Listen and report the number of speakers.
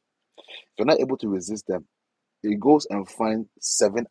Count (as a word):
one